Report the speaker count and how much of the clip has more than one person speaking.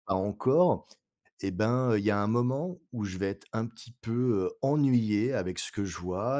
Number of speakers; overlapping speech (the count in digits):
1, no overlap